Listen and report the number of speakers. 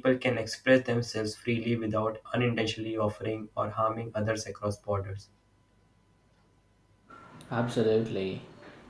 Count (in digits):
2